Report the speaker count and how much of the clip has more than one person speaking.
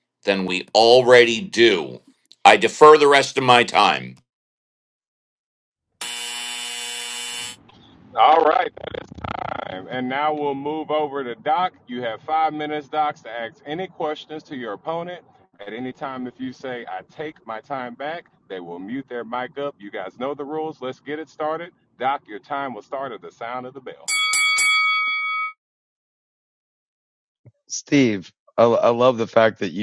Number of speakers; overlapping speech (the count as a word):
three, no overlap